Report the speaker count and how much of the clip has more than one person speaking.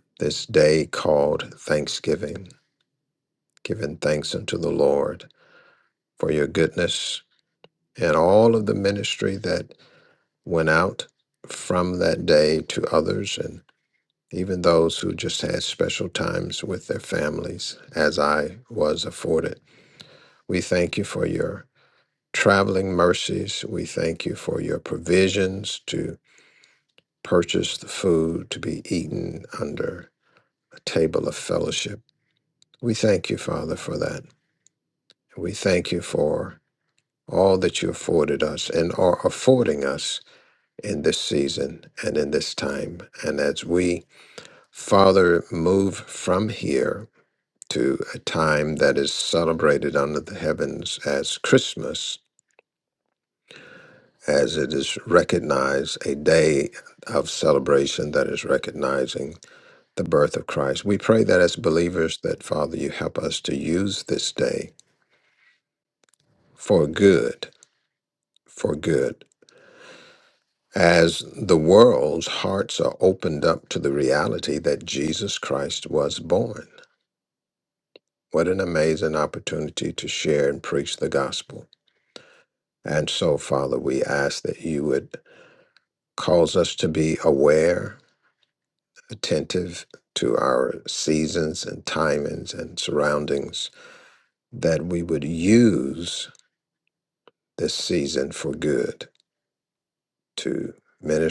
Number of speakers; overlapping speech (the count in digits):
1, no overlap